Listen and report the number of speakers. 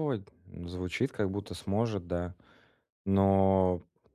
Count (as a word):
one